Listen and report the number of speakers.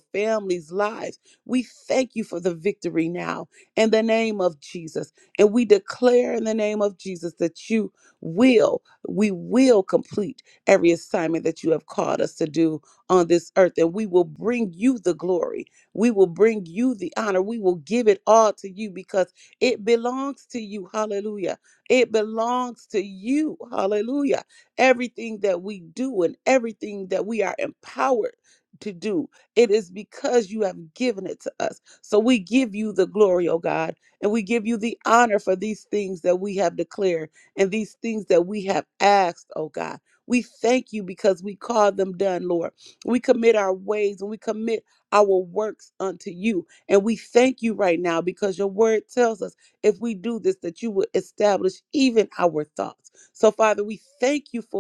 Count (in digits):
1